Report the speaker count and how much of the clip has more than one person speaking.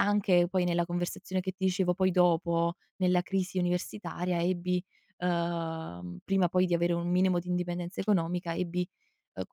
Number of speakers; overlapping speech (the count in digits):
1, no overlap